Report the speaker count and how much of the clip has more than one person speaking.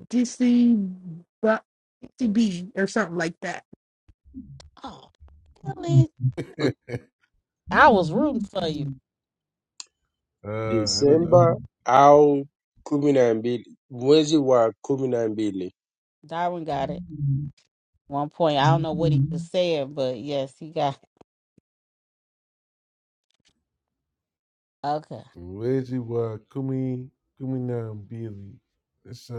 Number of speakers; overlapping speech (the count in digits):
4, about 2%